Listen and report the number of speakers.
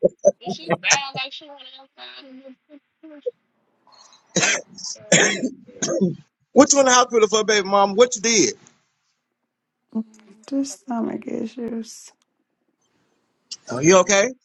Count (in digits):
3